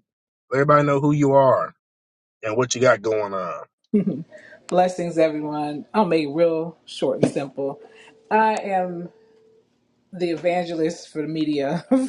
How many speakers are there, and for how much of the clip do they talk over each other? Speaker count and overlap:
2, no overlap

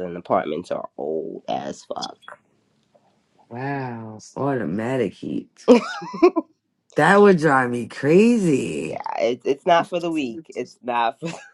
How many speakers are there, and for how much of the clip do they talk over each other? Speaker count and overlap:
2, about 1%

